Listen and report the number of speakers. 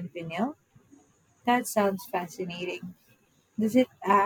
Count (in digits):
1